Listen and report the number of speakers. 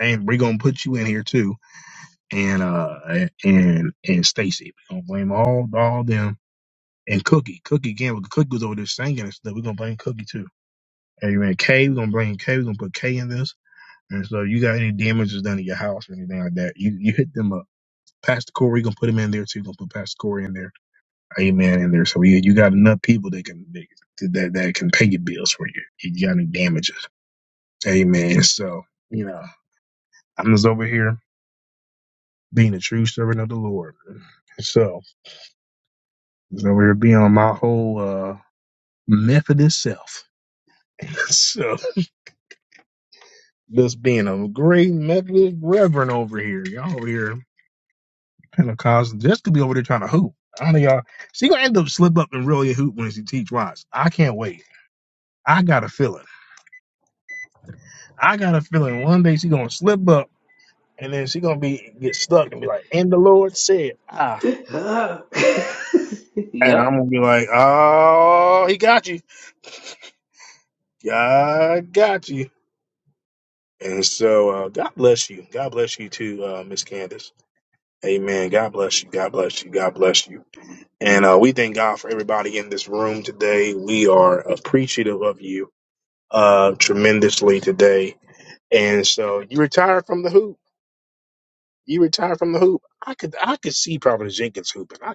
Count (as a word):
two